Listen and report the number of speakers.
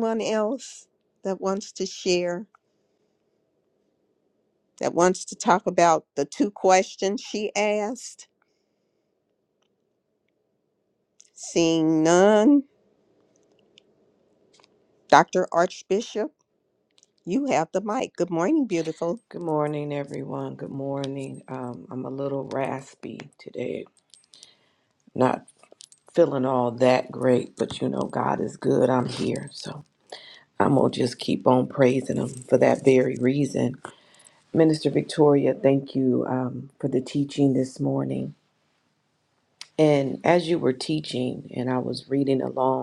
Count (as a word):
two